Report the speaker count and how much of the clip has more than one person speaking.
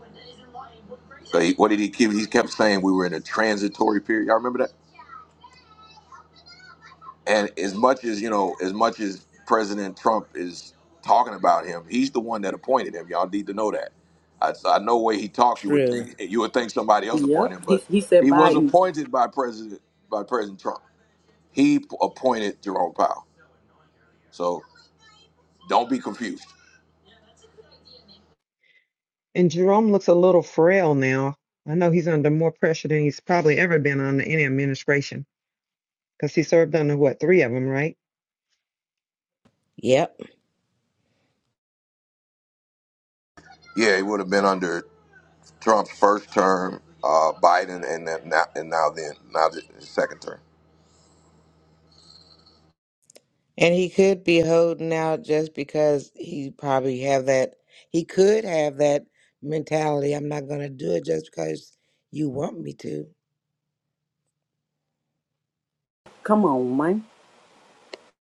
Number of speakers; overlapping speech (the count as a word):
four, about 3%